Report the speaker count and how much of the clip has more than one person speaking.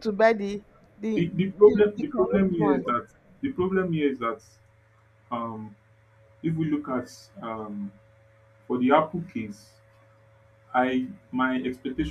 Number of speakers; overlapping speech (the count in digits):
2, about 11%